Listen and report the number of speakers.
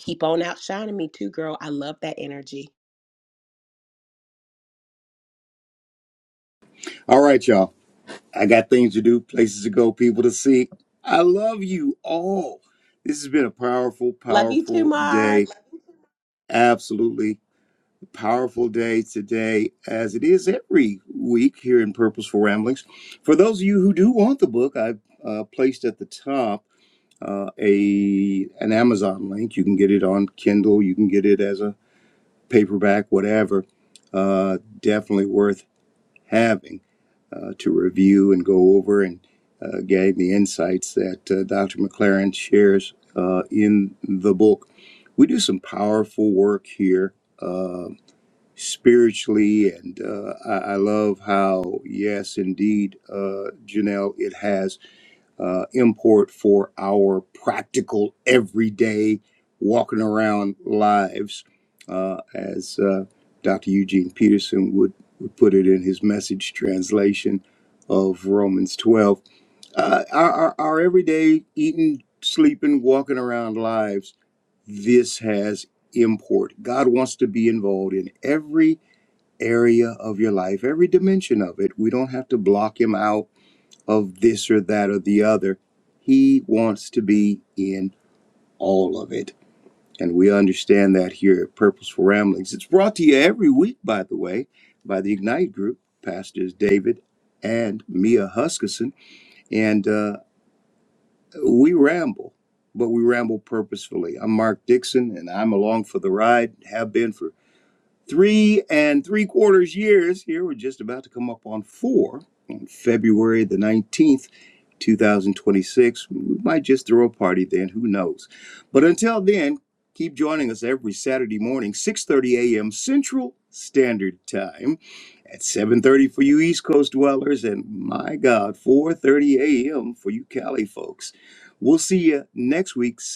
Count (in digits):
2